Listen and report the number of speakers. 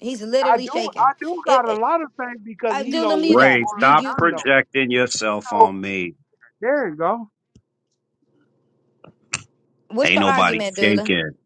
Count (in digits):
3